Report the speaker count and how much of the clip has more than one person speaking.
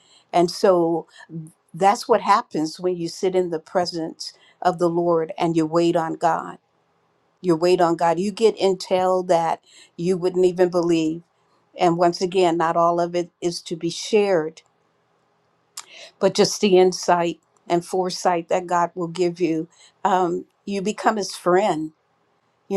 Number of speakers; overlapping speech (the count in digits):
1, no overlap